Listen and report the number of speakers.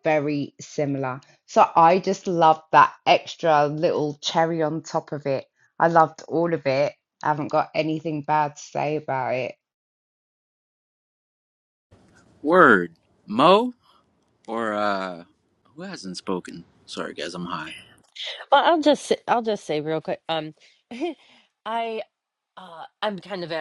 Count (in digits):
3